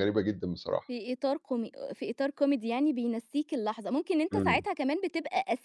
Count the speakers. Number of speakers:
two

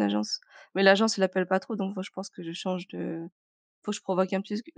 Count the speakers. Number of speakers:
one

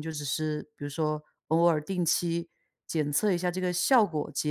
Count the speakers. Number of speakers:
one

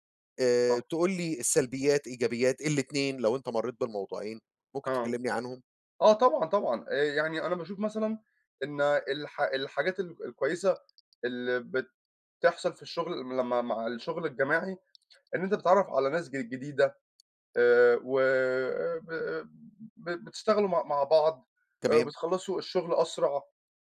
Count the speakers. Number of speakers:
two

